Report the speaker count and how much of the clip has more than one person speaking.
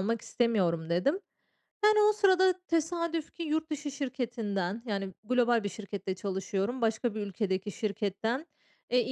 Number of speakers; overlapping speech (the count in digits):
1, no overlap